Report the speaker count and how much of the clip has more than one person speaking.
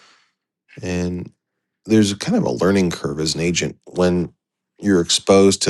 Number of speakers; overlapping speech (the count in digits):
1, no overlap